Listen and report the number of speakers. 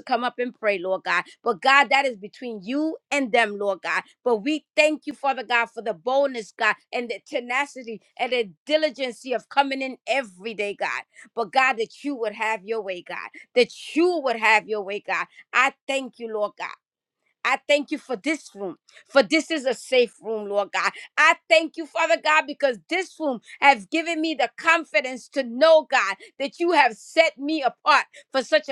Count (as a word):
one